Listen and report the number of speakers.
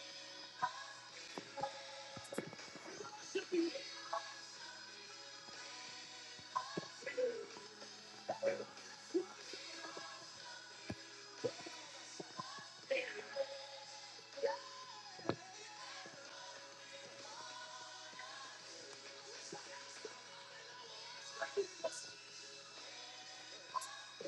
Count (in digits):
0